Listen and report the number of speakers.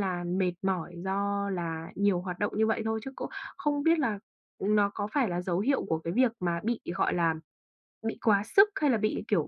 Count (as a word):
one